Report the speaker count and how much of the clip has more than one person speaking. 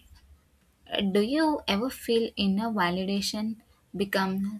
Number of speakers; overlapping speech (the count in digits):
1, no overlap